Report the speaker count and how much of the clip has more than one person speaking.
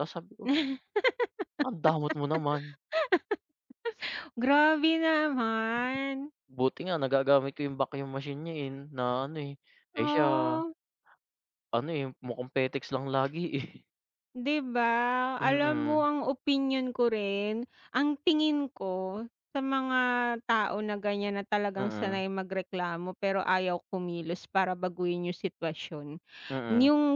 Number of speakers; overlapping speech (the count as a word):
two, about 7%